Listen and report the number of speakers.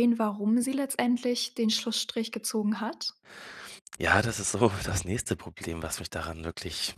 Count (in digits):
2